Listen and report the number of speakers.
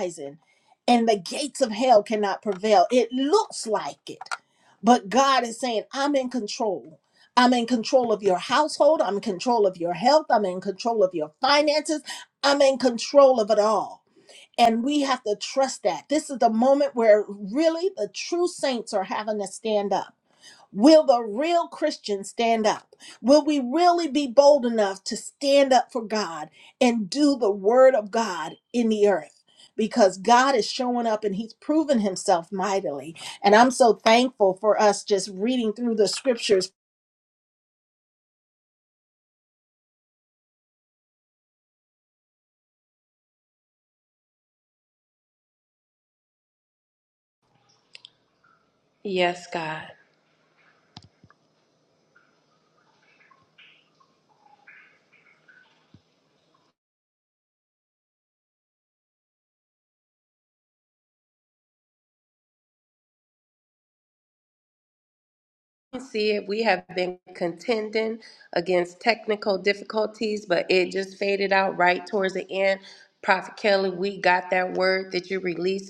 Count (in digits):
2